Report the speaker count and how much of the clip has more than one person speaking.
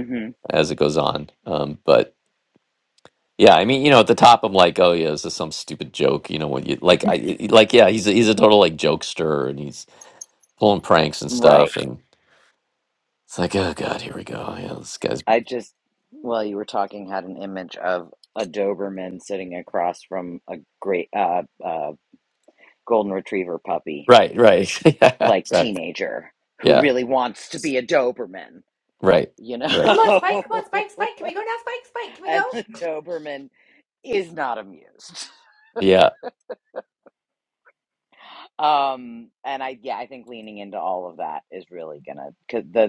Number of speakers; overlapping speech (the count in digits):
3, about 4%